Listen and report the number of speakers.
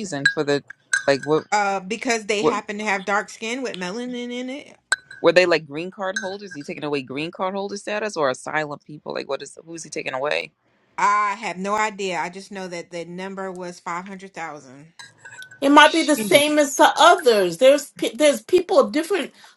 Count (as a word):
three